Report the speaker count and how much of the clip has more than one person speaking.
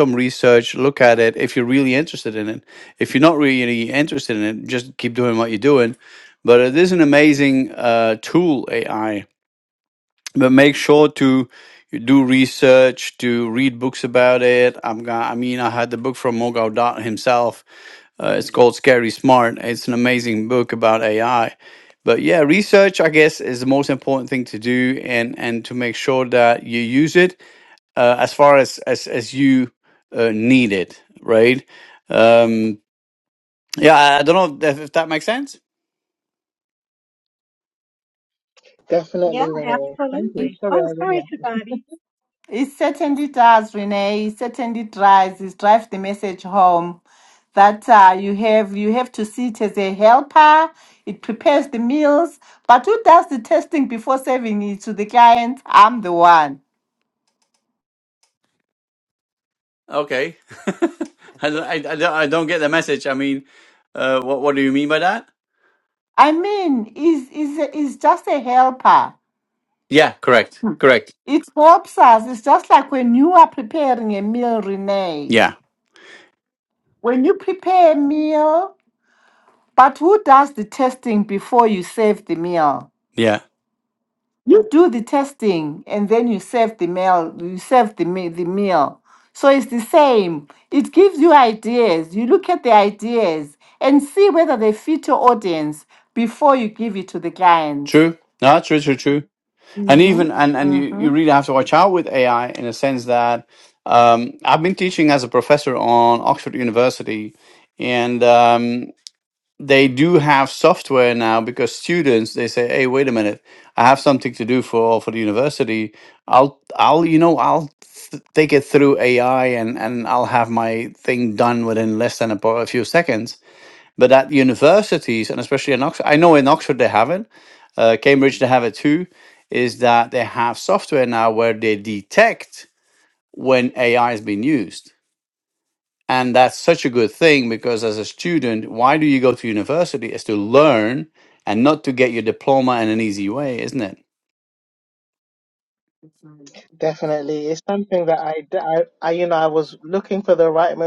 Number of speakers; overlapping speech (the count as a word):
four, about 2%